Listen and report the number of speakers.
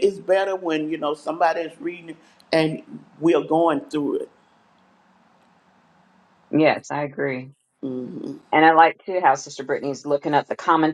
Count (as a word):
two